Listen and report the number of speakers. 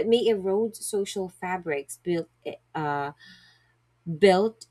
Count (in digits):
1